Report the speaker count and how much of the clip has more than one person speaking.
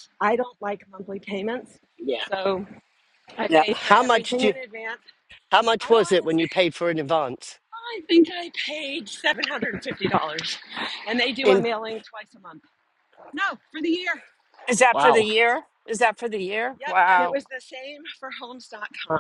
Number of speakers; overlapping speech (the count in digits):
3, about 14%